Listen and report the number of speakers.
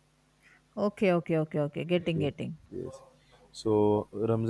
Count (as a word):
two